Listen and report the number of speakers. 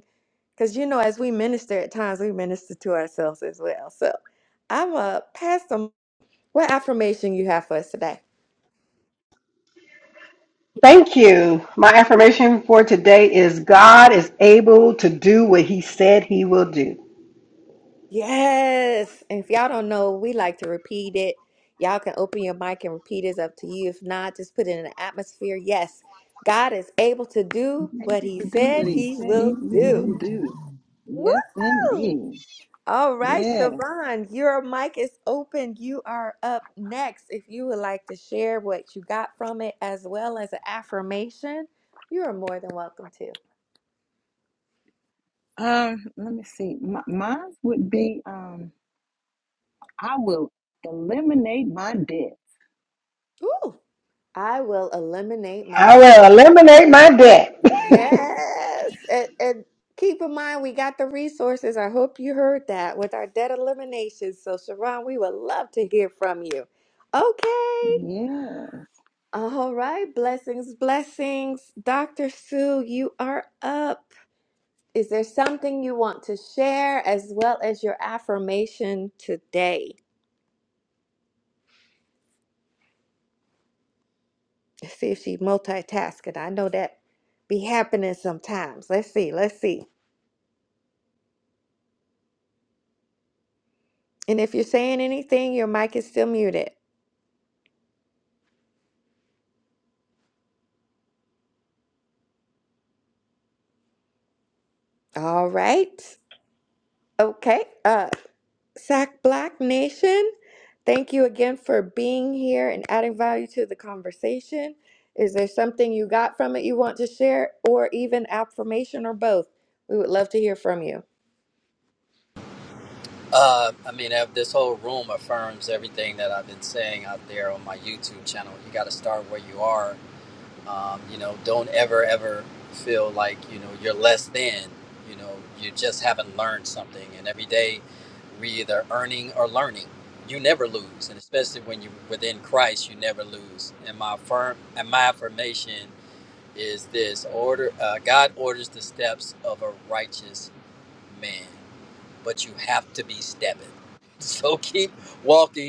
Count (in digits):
4